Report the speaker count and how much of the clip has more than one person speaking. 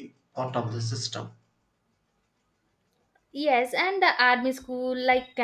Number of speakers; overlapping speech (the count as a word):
two, no overlap